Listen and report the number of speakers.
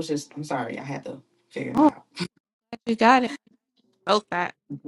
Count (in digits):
2